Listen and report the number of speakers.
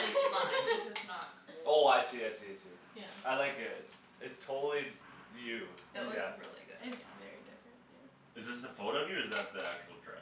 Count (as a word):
four